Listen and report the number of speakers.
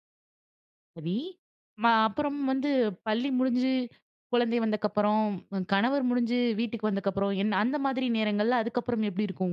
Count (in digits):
1